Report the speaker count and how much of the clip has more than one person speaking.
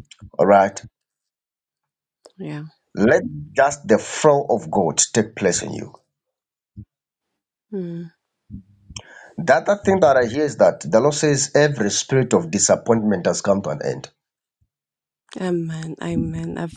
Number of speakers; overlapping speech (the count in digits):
2, no overlap